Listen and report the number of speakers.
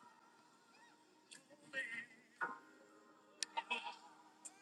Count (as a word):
zero